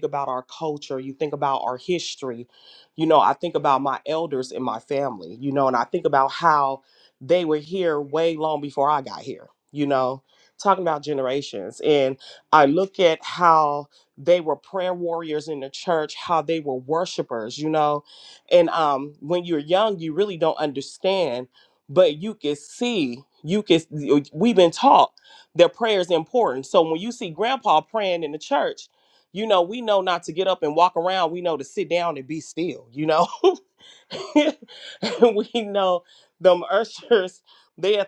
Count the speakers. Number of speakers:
one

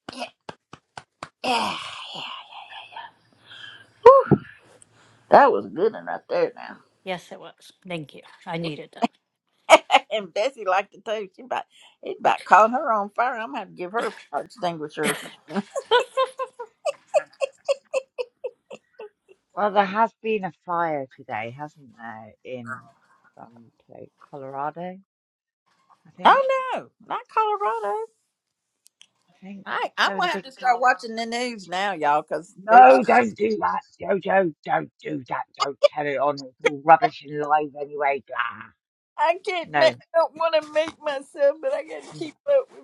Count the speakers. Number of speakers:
three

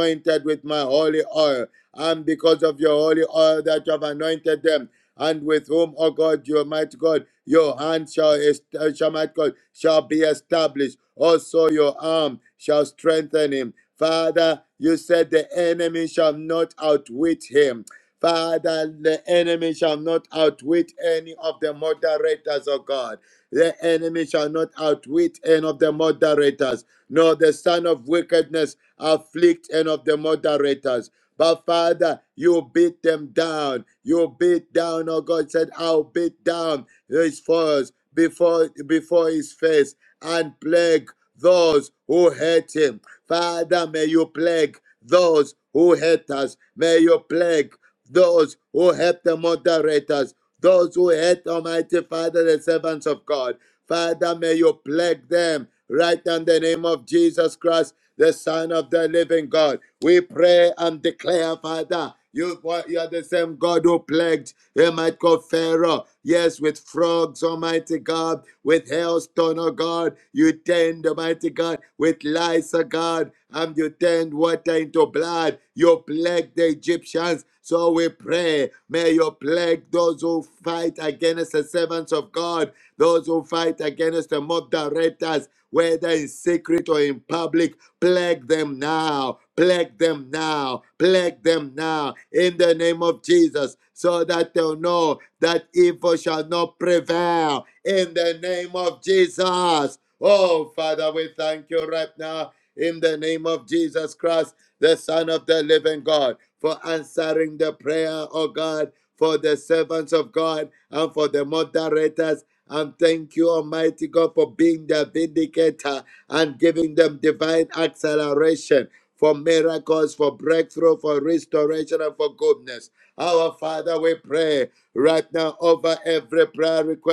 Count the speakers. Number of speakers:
one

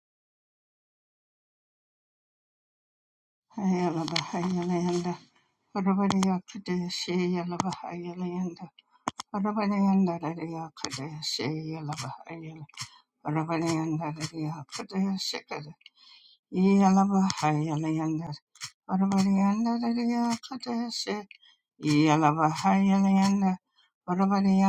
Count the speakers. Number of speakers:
one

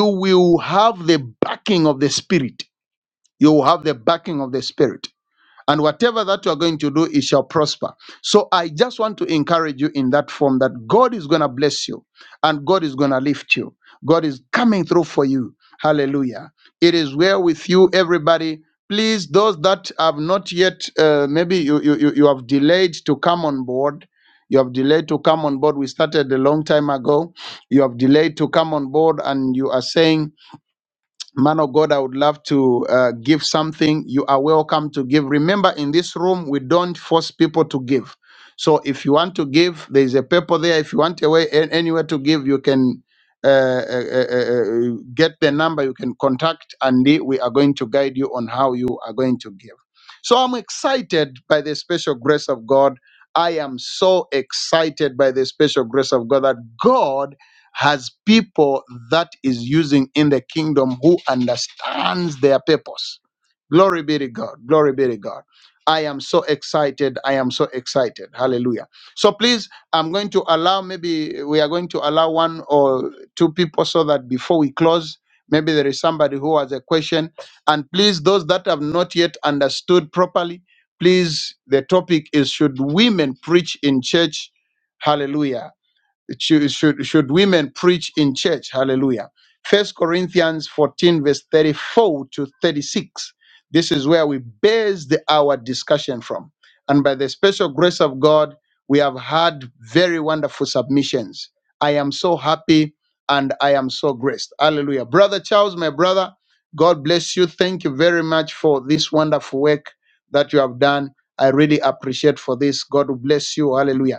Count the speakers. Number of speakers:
one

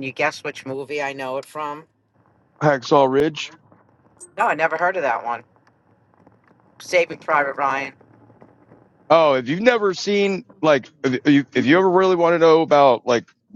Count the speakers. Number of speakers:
two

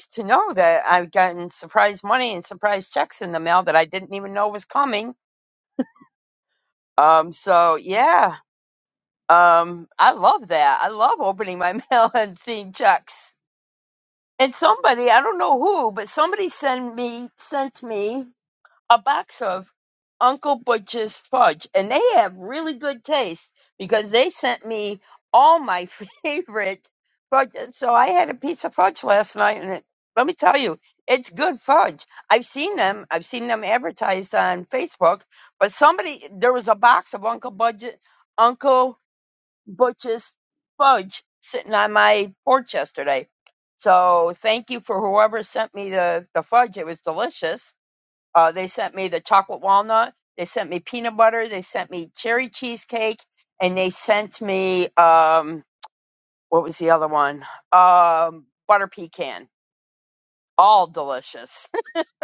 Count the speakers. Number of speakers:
one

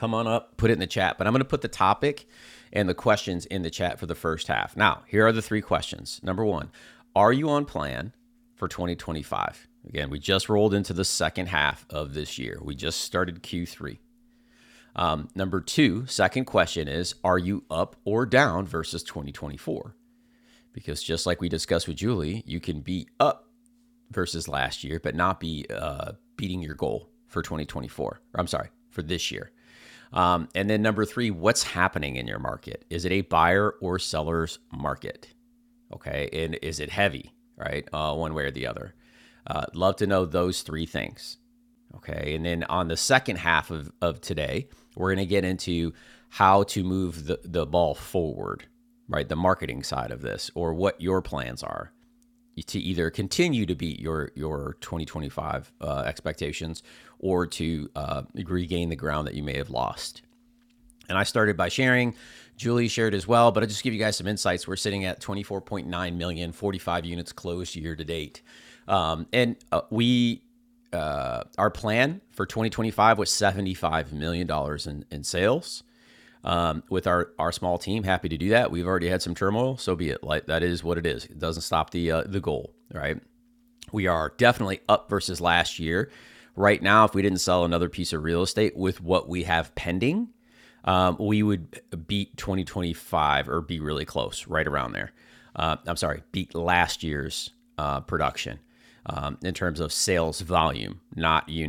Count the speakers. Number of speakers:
one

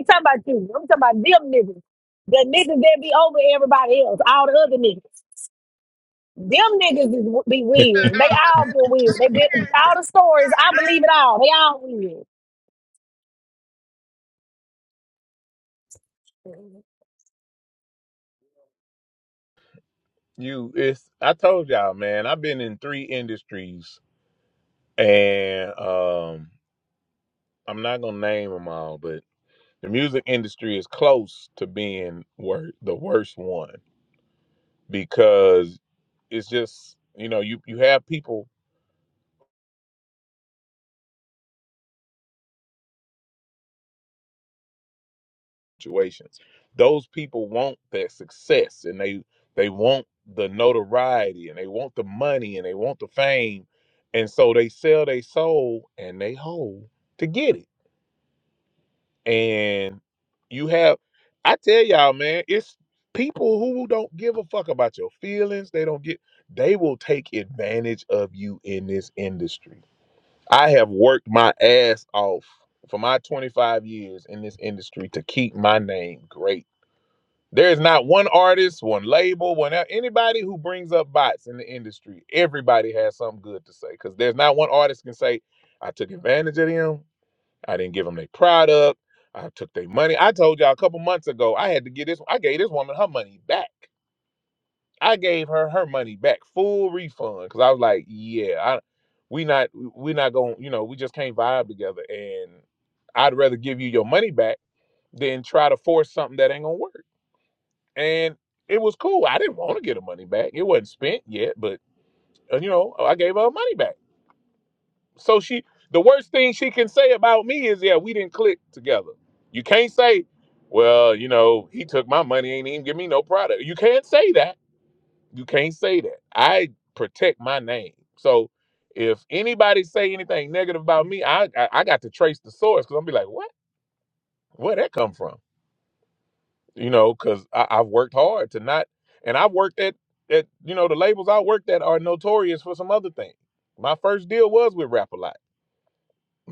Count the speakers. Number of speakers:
two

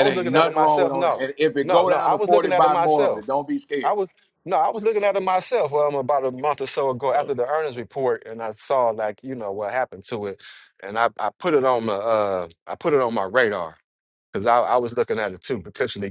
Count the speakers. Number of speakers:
two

